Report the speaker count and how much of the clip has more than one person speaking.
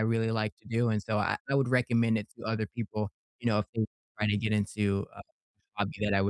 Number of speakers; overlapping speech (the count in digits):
1, no overlap